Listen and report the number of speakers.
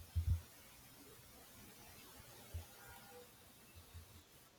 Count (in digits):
0